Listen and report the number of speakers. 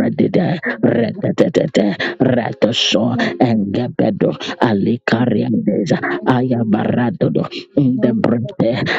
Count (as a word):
one